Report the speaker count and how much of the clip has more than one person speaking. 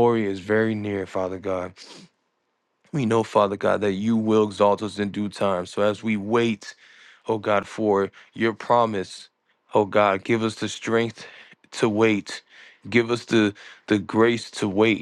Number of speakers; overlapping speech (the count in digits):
1, no overlap